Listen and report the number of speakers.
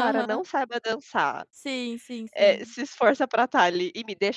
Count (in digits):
2